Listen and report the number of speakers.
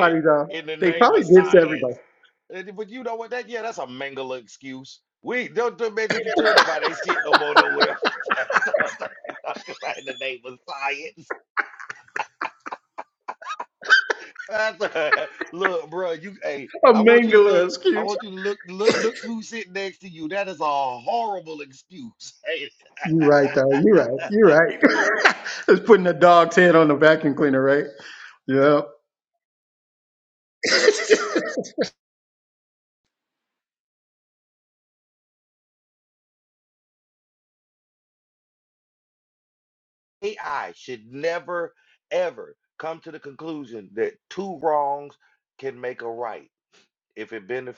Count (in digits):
2